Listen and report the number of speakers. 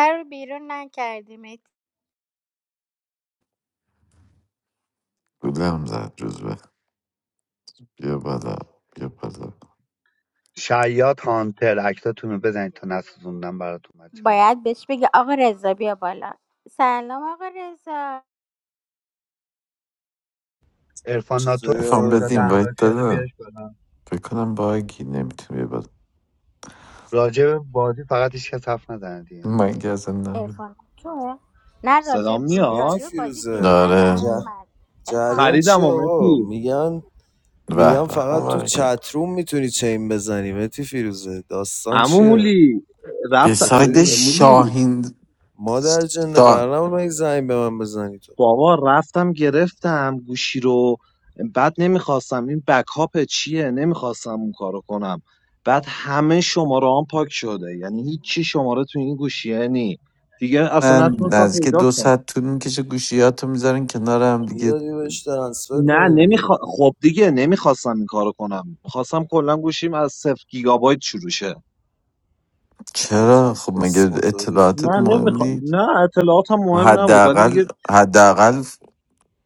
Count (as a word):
five